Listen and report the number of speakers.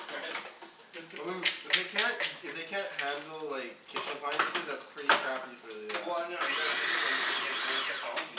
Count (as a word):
two